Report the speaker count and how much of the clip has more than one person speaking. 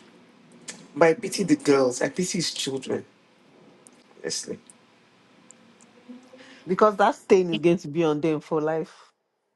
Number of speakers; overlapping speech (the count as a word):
two, no overlap